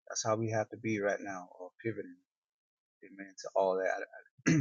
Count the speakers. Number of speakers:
1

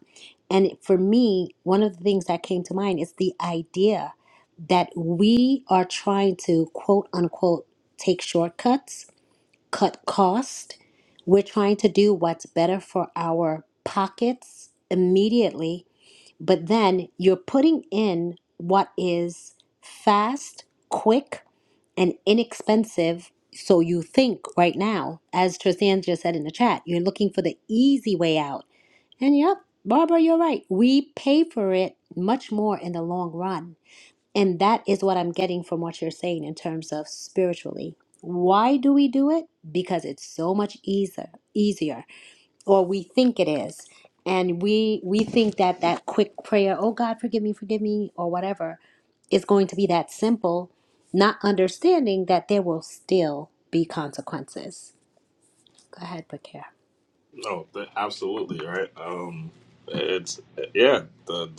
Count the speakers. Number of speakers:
2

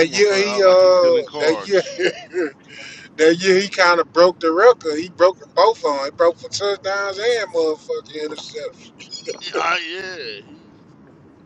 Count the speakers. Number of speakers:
2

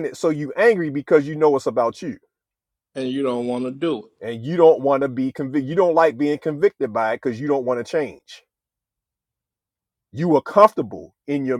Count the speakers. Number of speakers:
2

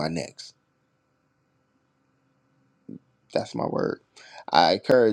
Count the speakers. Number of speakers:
1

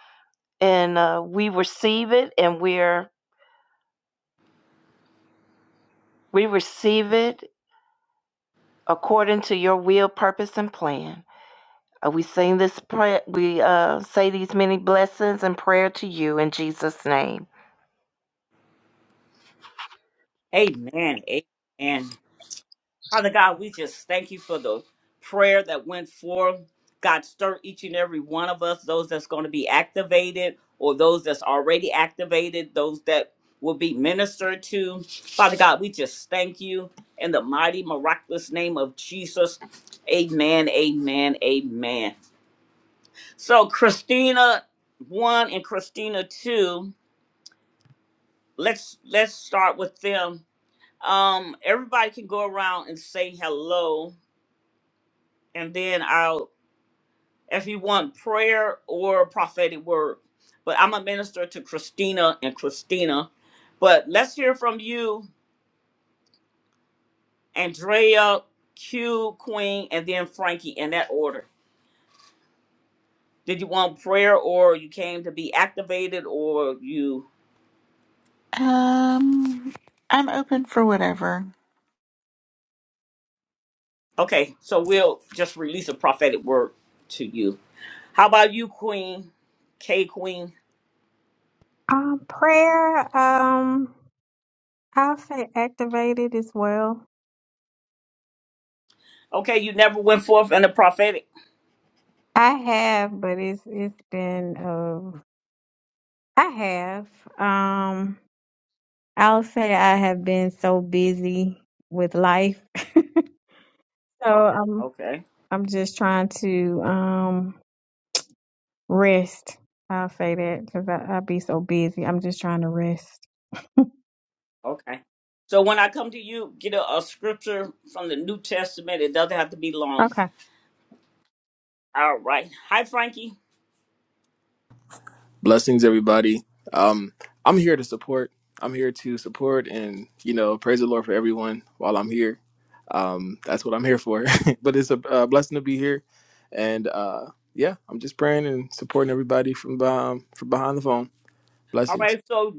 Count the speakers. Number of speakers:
5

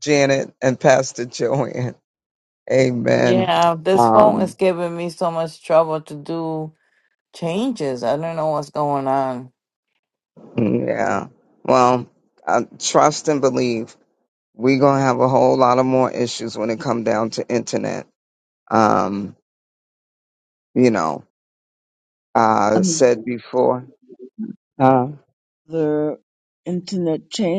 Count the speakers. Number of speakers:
3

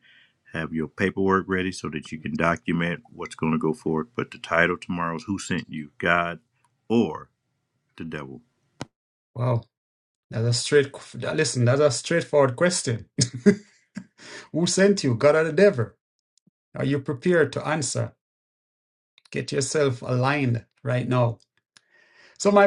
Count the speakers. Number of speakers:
2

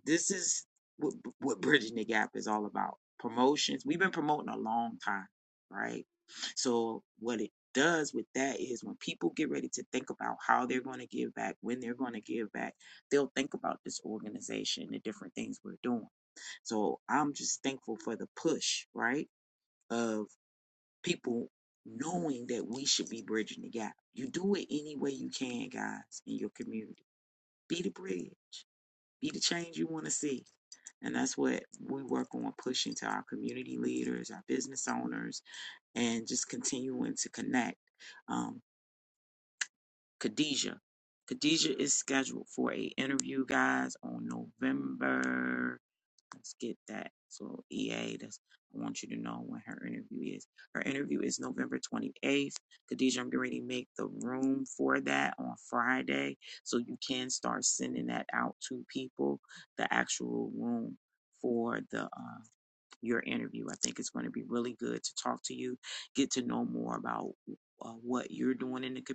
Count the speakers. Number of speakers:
1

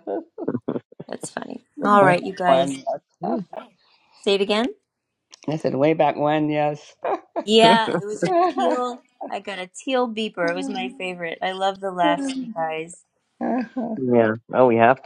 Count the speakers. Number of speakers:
3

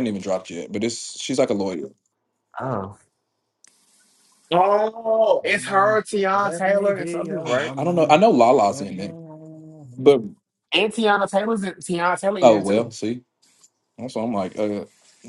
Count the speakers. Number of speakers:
3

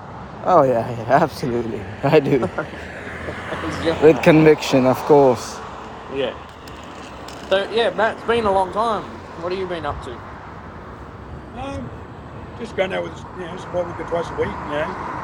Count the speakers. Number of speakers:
3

